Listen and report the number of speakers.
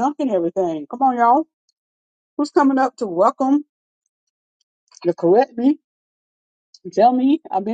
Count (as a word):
one